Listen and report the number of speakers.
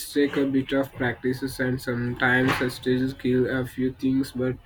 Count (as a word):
one